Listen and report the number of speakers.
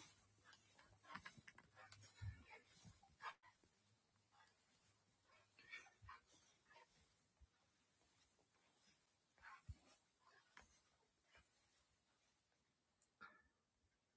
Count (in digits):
0